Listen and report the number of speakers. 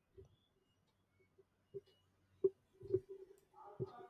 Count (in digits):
0